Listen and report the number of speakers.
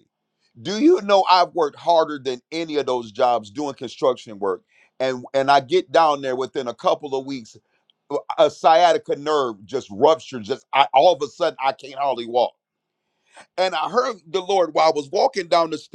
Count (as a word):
one